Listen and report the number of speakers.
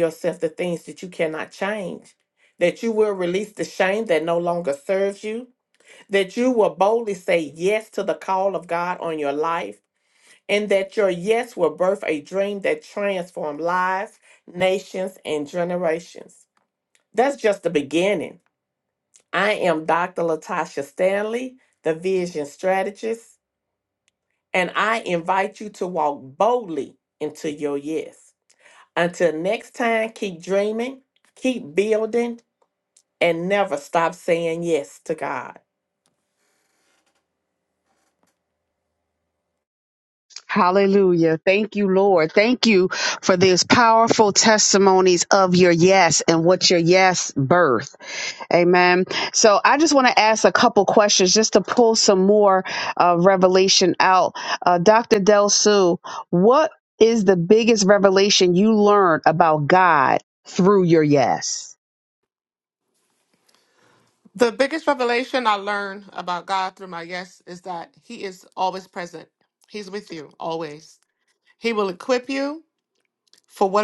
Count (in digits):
3